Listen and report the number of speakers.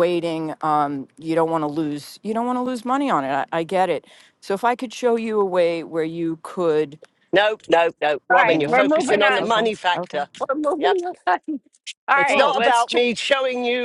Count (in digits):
3